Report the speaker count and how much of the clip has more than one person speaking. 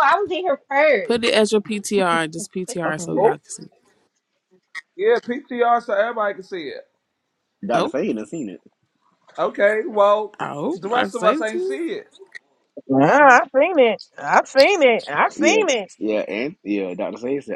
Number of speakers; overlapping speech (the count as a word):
five, about 12%